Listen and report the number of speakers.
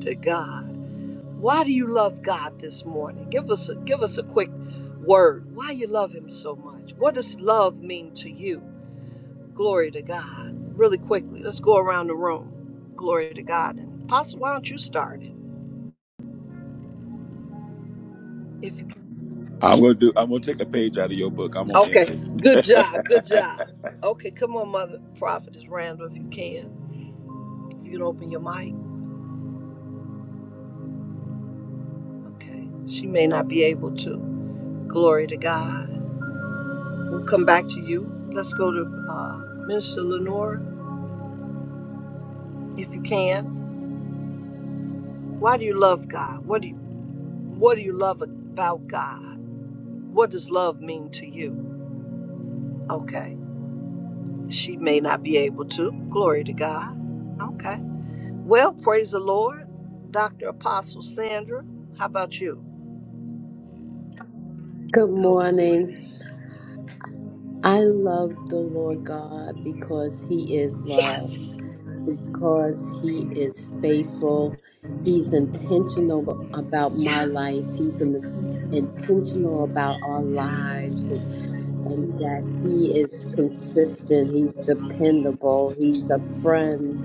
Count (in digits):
3